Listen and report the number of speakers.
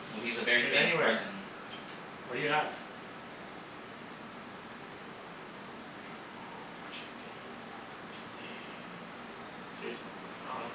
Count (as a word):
two